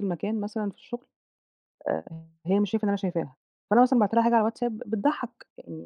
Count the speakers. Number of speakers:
one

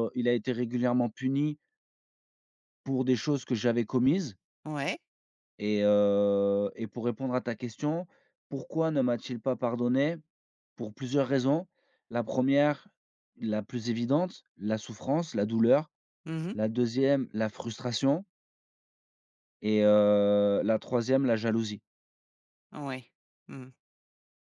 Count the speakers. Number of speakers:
two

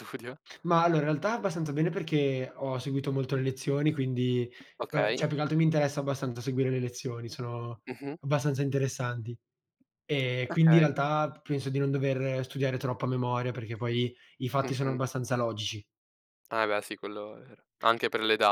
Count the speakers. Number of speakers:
two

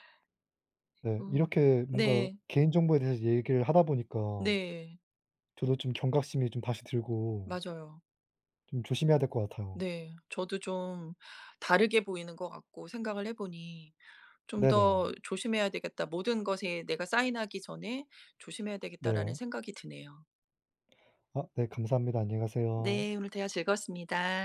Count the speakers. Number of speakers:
two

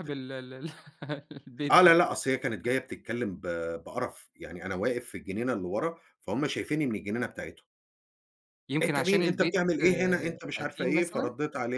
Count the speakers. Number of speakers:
two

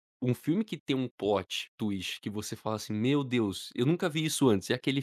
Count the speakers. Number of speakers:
one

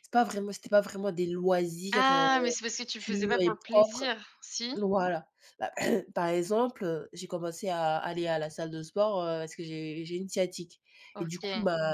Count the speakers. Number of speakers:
two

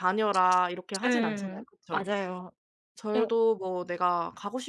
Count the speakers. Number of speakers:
two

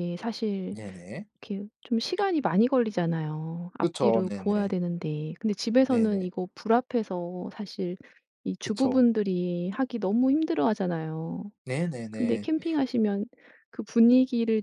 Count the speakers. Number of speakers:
two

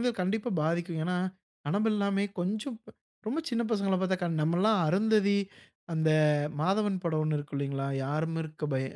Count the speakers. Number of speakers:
one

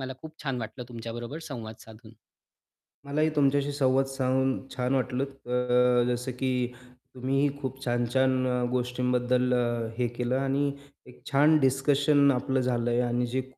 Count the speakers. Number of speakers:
two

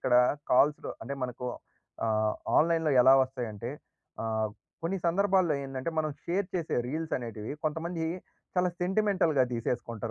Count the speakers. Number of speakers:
one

